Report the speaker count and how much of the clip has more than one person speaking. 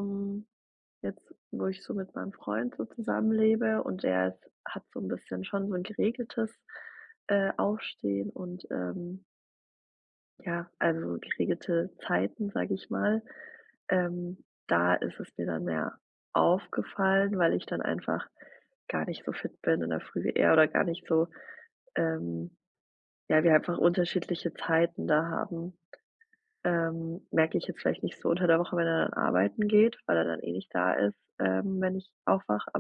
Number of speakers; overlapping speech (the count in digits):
1, no overlap